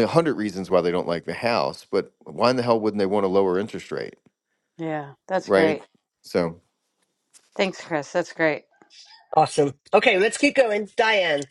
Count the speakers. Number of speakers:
3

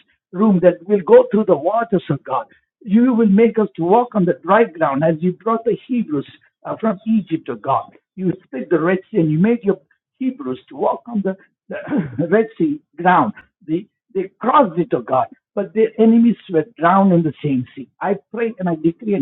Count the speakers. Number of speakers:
1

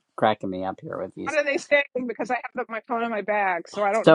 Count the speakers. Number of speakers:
2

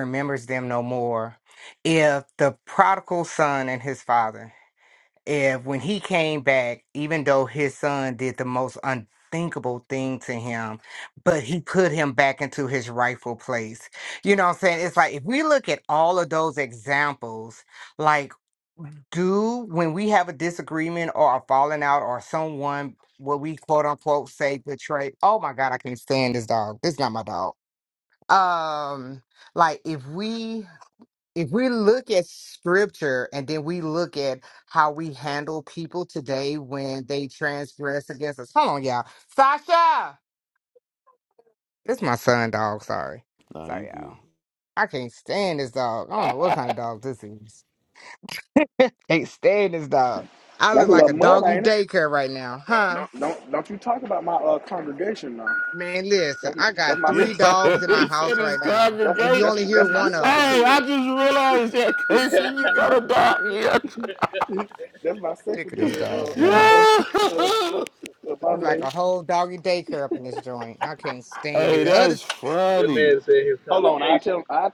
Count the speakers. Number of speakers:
4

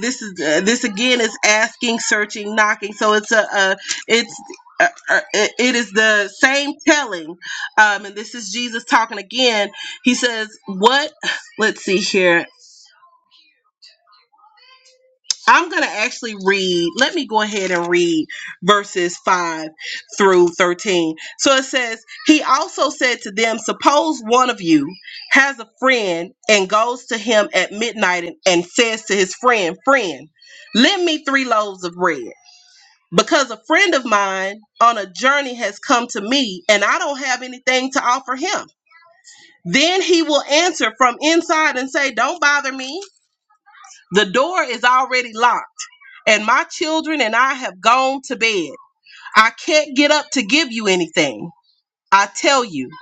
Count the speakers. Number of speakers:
1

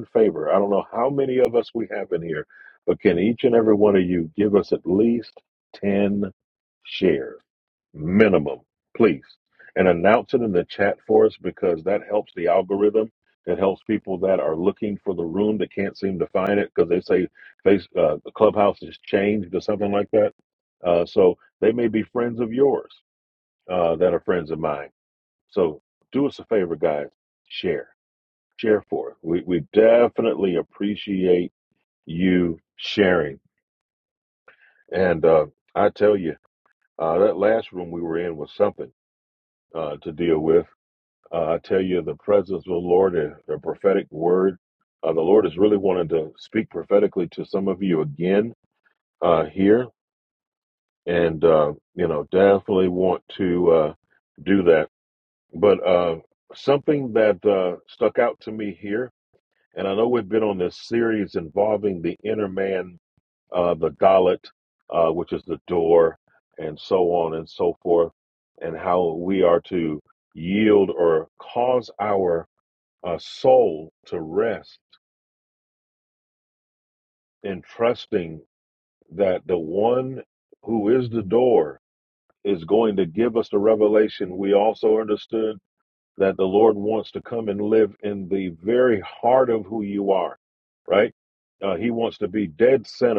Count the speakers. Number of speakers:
1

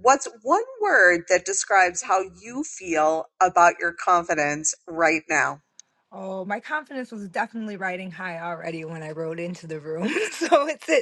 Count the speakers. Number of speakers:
2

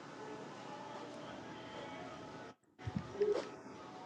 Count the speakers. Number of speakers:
0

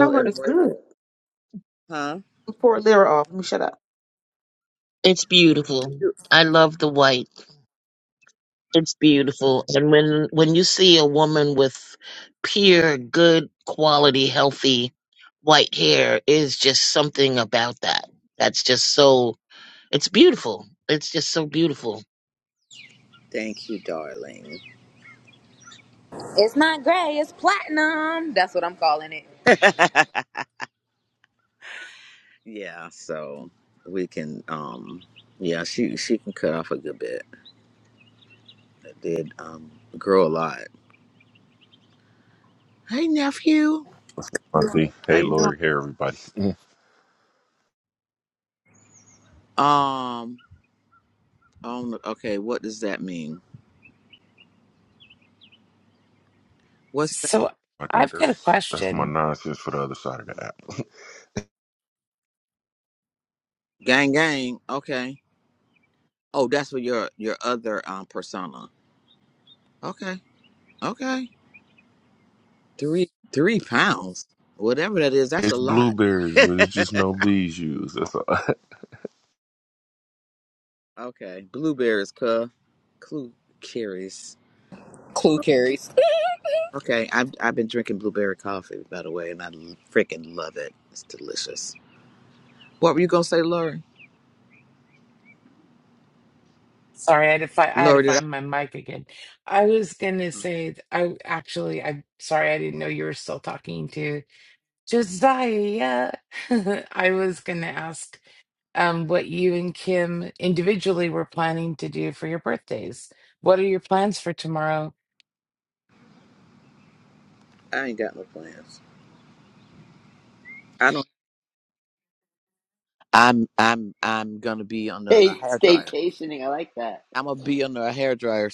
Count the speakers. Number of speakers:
7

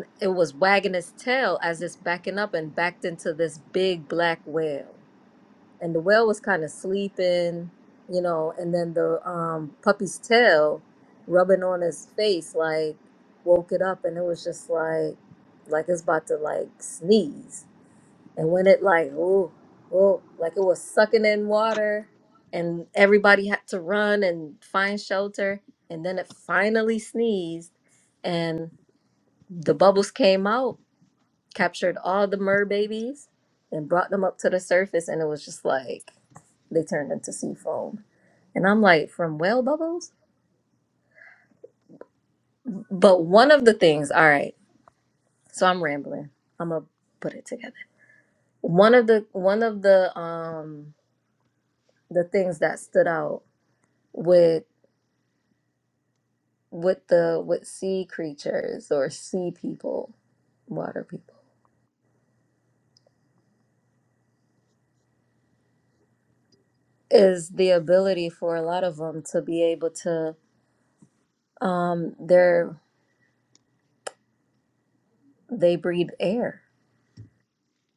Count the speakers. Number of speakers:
1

